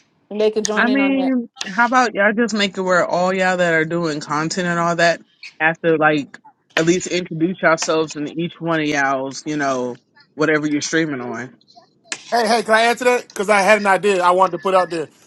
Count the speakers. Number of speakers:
3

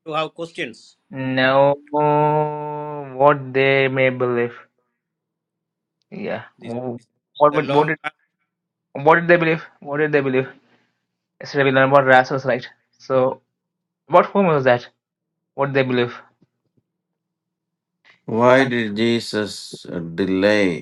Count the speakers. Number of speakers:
3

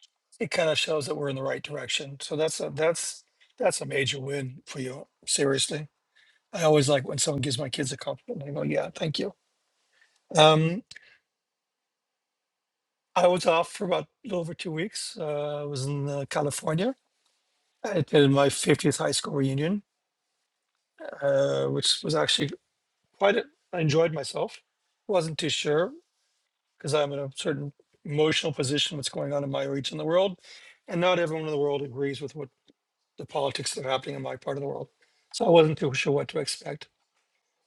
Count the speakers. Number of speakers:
1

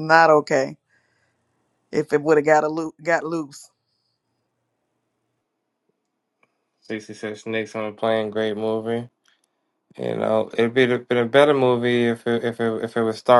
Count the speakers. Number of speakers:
2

